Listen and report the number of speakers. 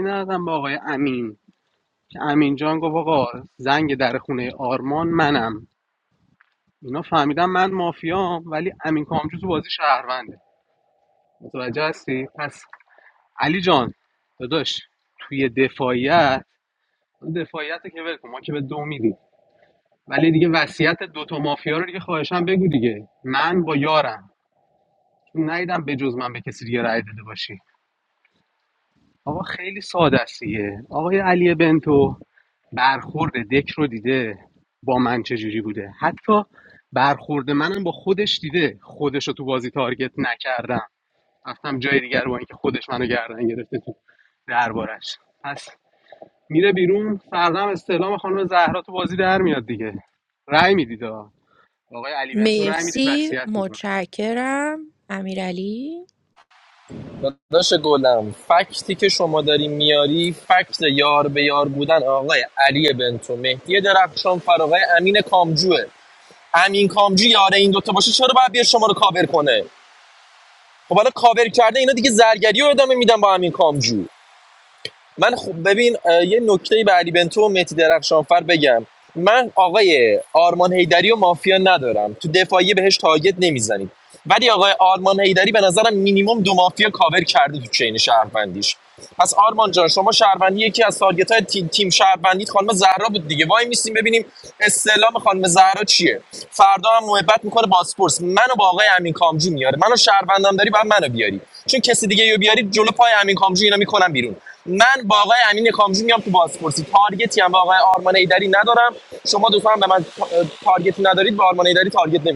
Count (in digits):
3